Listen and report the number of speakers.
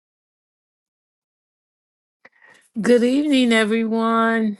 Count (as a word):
one